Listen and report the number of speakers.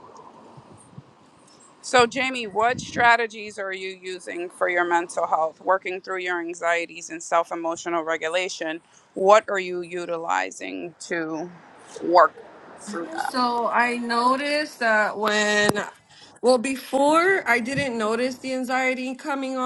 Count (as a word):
two